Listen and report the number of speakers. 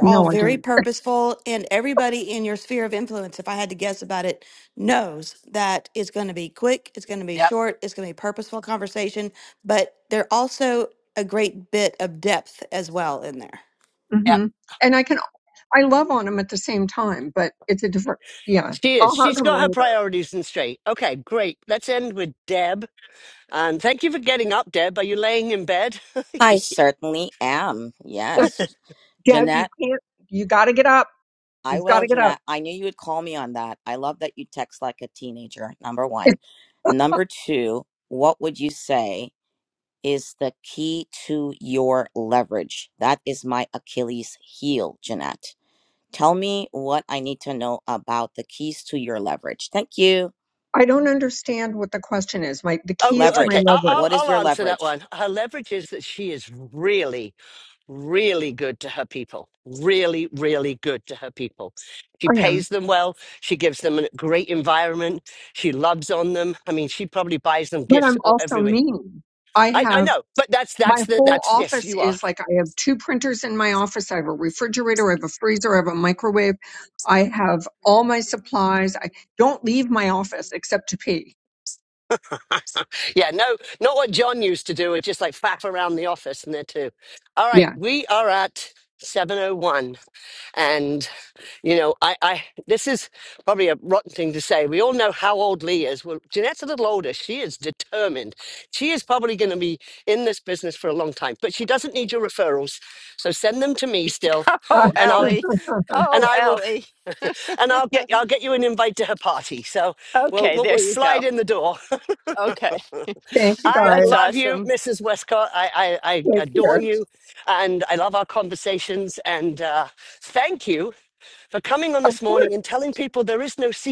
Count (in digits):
5